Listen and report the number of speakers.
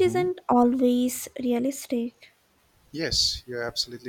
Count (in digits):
2